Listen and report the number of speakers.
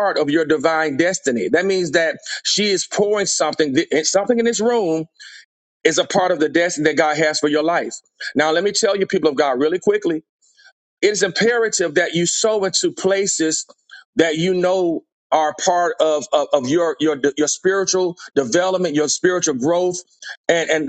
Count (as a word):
one